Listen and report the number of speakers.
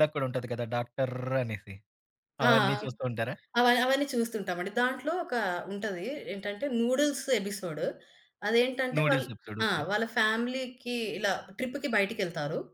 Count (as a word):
two